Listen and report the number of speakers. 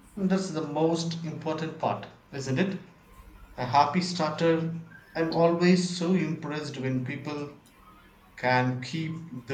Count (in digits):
1